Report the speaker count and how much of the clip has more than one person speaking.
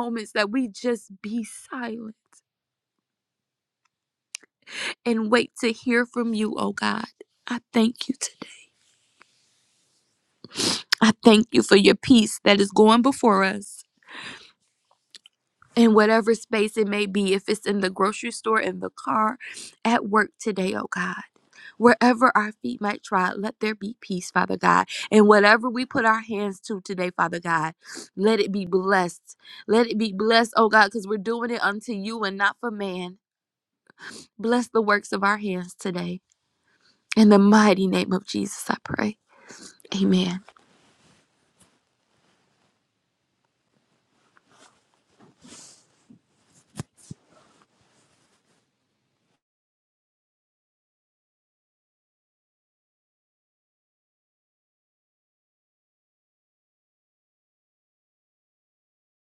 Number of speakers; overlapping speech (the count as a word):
one, no overlap